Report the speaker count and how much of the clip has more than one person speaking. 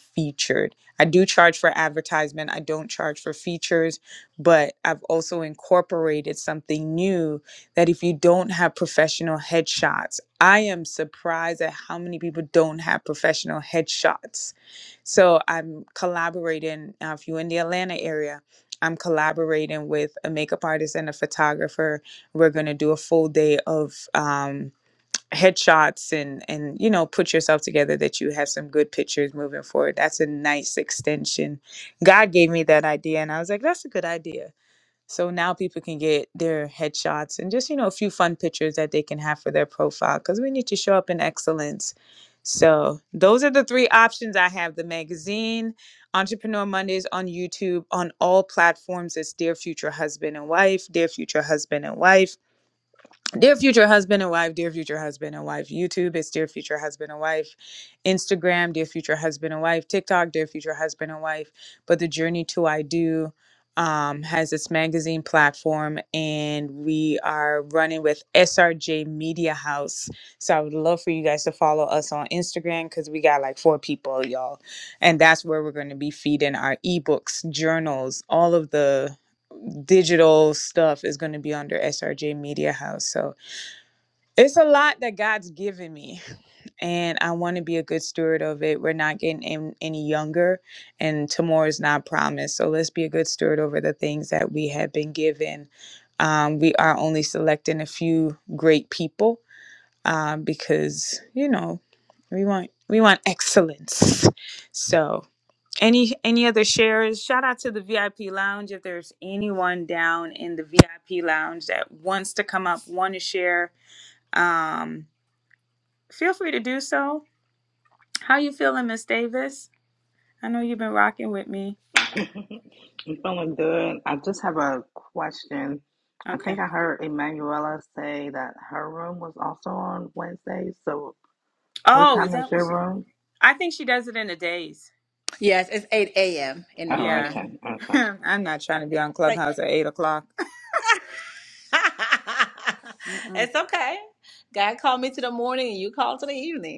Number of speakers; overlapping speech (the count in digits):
3, about 1%